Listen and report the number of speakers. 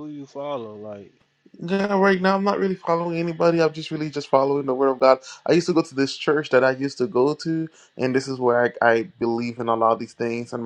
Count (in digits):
2